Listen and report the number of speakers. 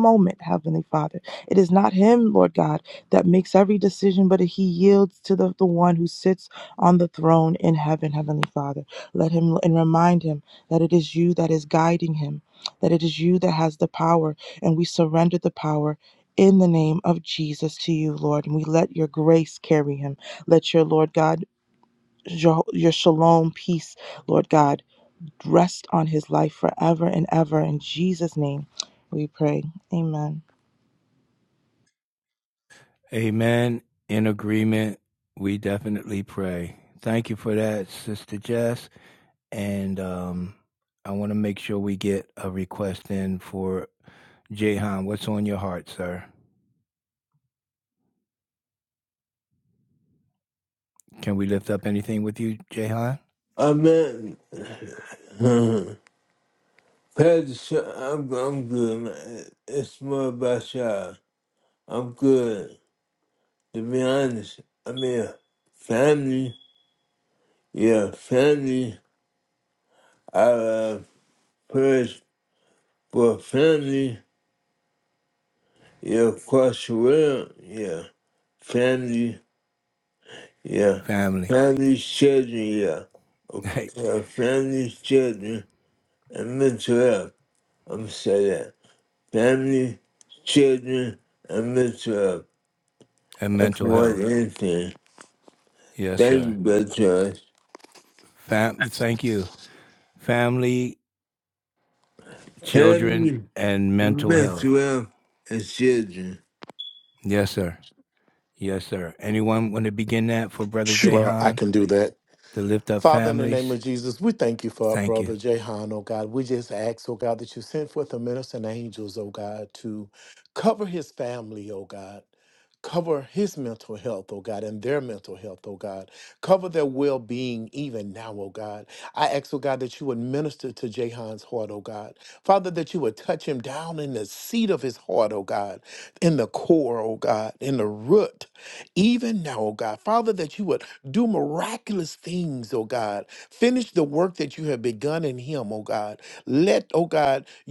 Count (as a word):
four